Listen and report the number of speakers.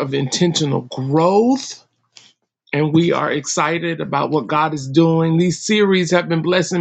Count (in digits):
1